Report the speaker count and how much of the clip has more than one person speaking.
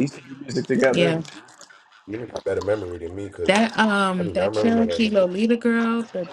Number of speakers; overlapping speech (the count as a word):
three, about 24%